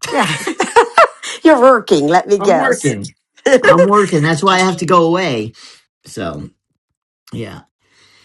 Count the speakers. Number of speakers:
two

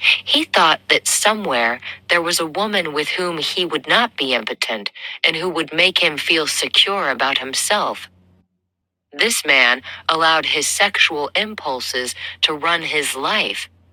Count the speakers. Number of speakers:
one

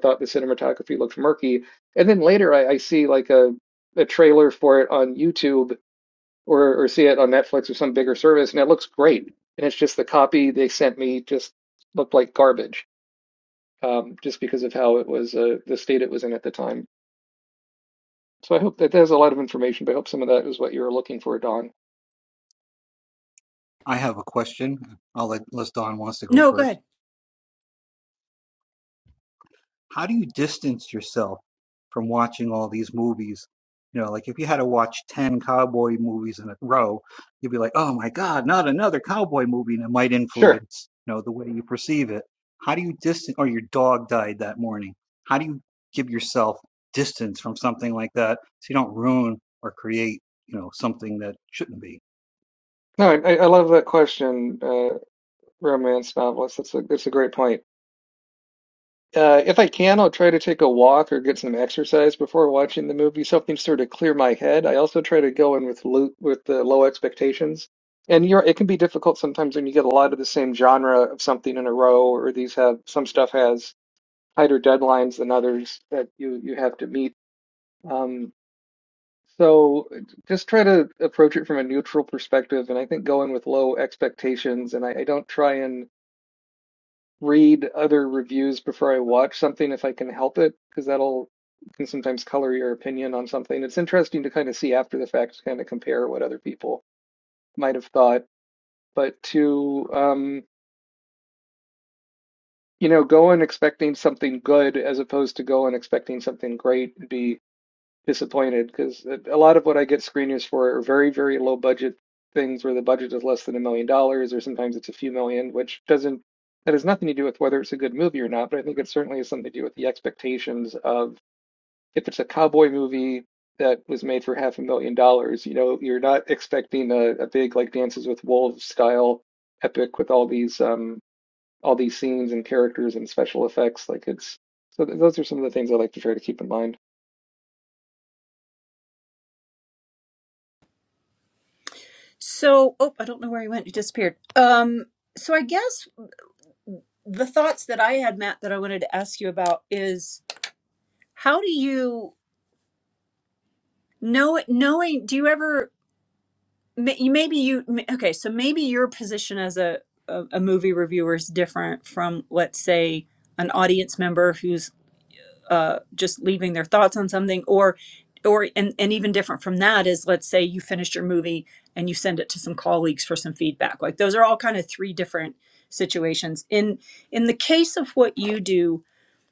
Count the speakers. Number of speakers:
three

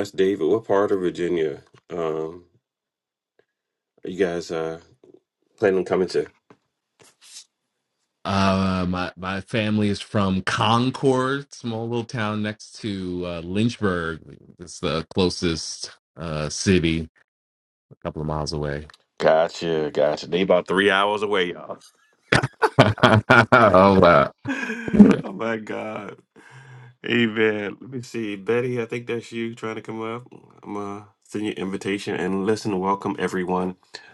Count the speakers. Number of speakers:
two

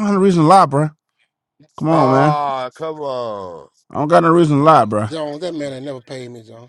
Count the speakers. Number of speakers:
three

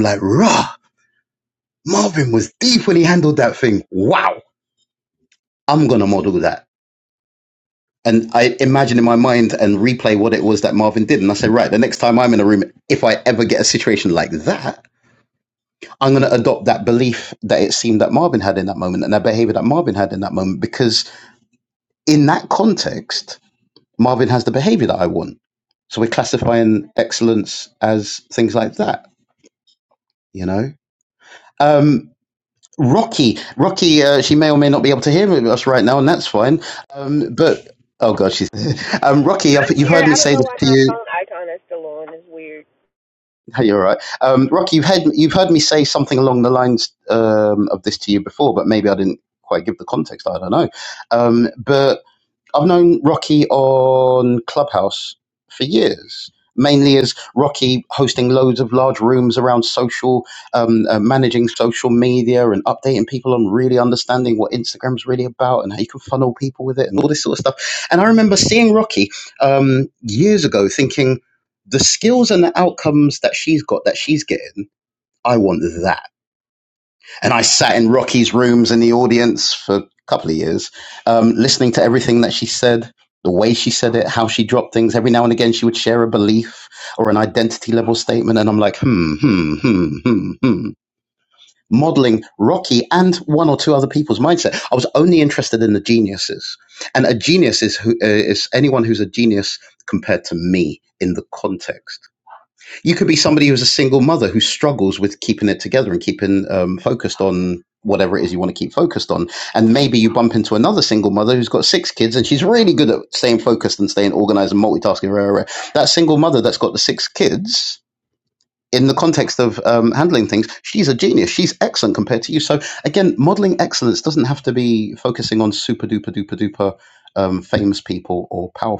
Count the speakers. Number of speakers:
two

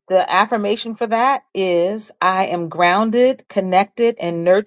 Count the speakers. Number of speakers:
one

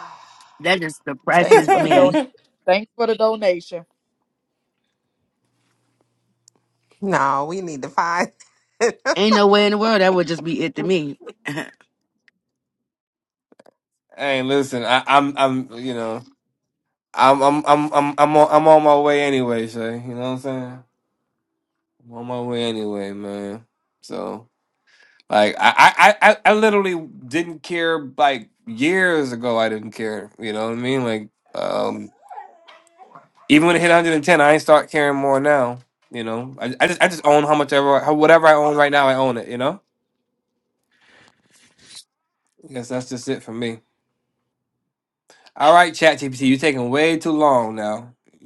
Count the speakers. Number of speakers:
four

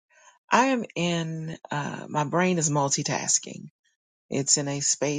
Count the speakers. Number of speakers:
one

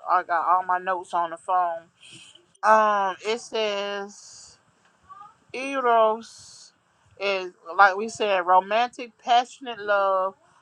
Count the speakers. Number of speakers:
one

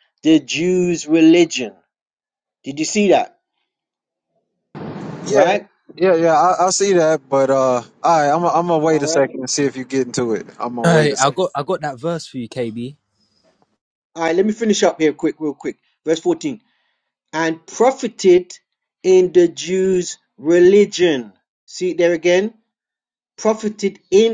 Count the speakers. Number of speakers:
three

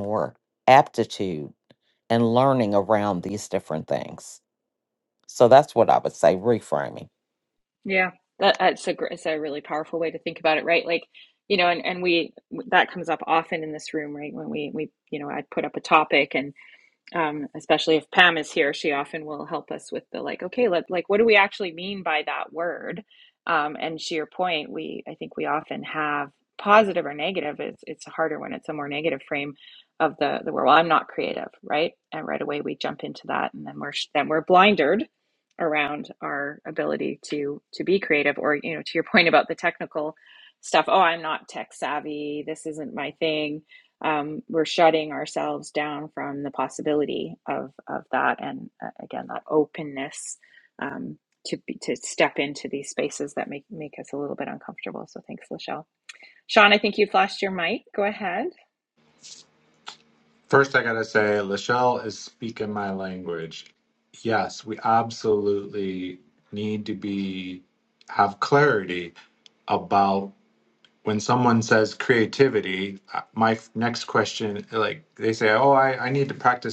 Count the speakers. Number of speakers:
three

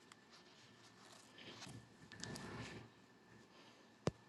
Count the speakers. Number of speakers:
zero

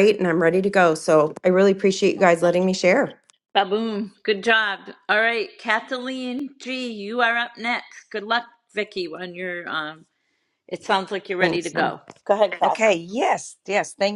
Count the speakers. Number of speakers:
three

